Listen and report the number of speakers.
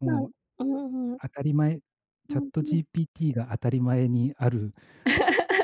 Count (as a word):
two